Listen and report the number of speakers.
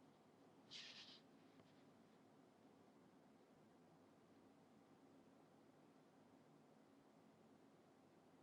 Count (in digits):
0